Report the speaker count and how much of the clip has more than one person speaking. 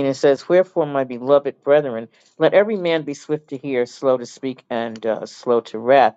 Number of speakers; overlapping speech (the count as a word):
one, no overlap